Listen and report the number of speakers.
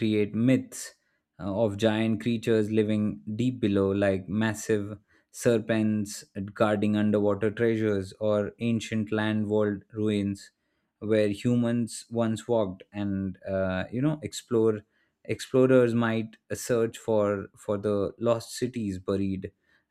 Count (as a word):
one